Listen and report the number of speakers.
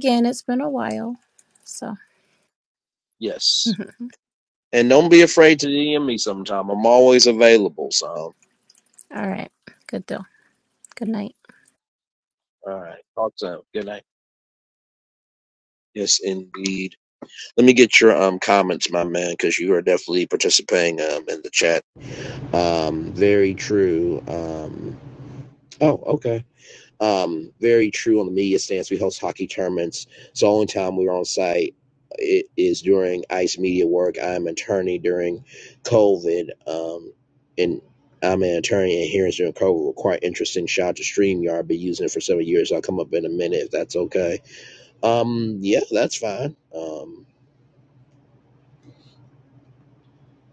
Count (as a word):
two